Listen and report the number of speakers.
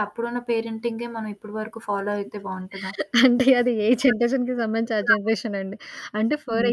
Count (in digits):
2